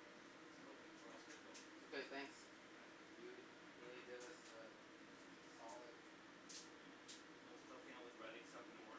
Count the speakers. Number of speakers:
2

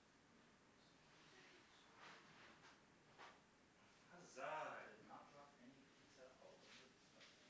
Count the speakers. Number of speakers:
2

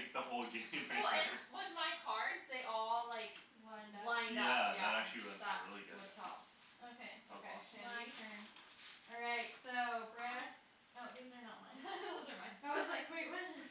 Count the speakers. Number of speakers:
3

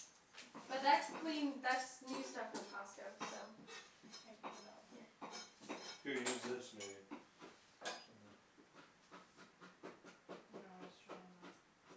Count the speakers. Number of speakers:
3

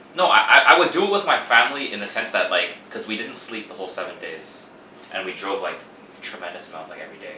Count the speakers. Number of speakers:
1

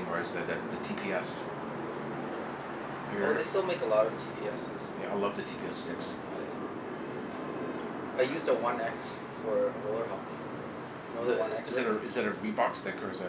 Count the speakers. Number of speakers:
2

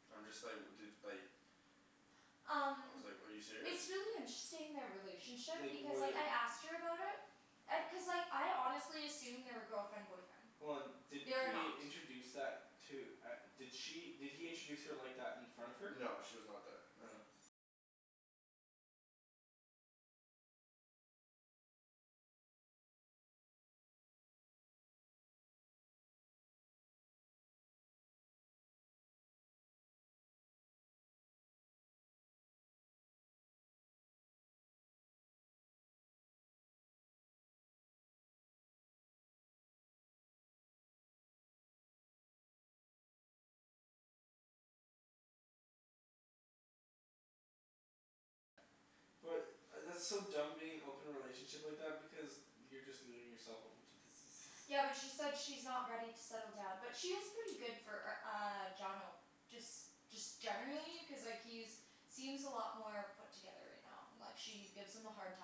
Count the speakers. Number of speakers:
3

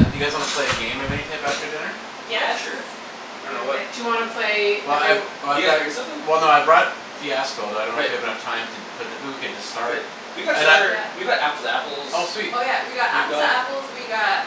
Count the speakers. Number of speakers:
4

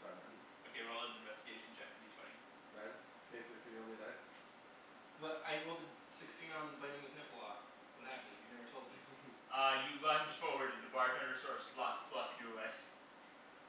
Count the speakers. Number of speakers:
3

